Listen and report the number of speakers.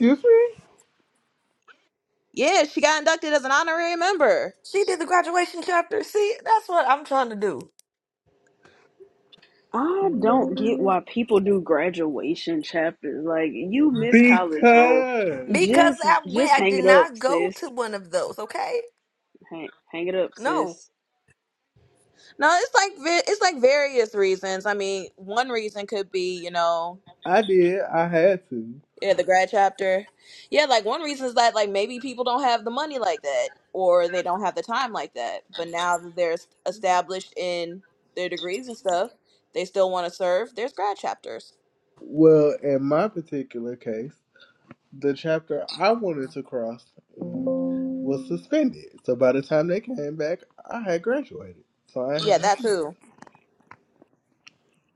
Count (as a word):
four